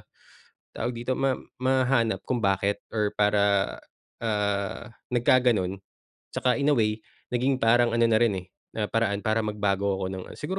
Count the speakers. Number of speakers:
1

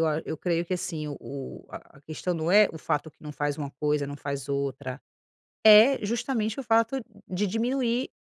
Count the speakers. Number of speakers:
1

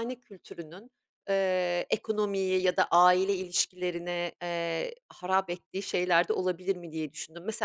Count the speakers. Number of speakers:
1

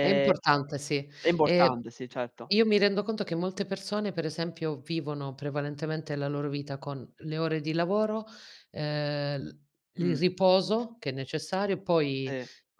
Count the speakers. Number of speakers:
2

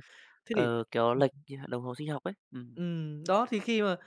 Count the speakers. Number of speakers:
2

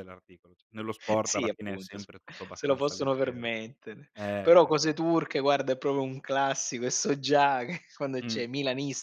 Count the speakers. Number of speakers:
2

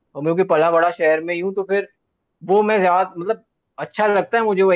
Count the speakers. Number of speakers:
1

